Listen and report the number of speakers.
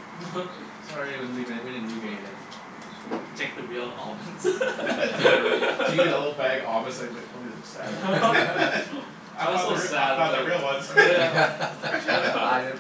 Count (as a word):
three